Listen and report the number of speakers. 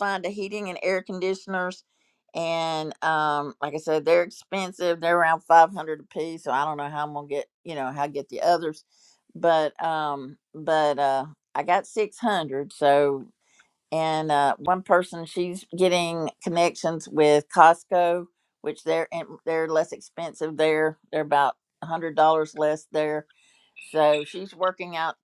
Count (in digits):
1